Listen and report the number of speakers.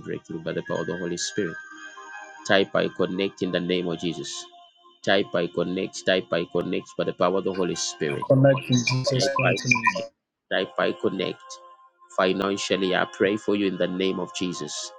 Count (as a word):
two